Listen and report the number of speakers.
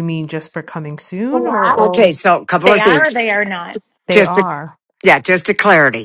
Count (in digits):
3